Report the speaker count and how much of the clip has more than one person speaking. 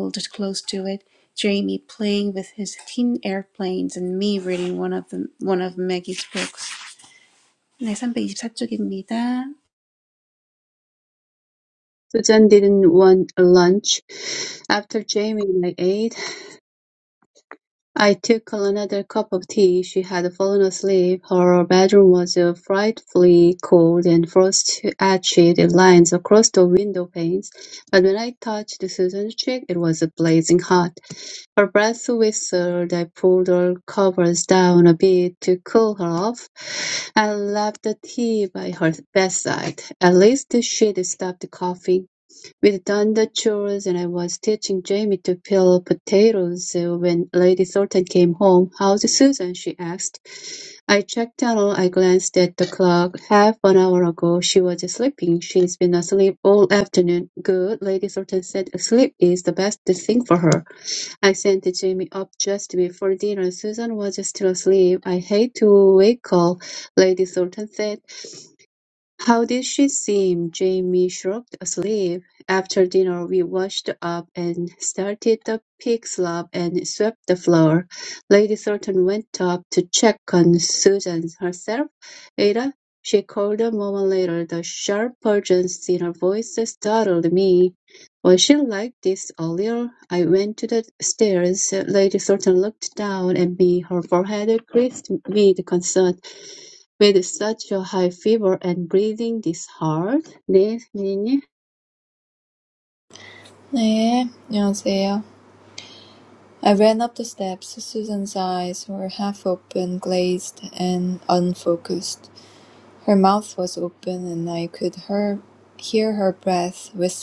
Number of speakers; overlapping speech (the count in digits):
3, no overlap